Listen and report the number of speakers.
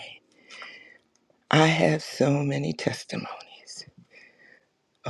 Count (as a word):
one